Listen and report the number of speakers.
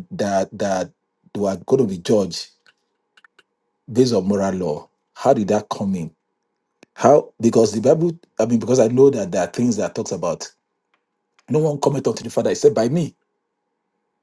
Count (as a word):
one